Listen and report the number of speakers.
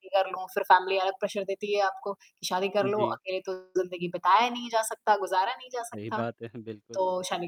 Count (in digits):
2